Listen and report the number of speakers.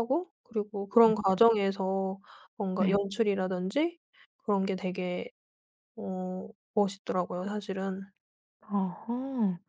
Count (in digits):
2